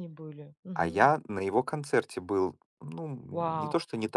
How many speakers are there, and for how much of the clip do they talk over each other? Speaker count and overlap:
2, about 18%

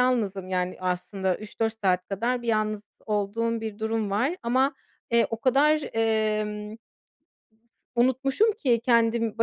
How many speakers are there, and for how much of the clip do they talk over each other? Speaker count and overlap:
1, no overlap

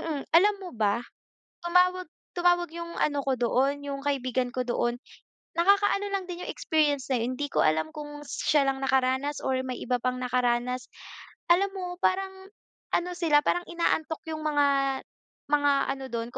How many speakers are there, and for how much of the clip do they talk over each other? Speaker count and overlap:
1, no overlap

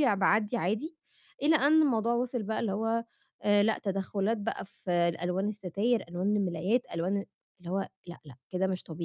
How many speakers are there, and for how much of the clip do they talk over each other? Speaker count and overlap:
1, no overlap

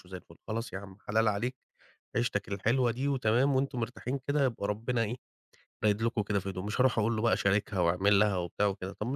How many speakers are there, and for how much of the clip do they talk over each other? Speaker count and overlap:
1, no overlap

